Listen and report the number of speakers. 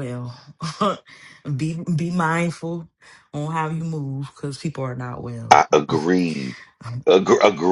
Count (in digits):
2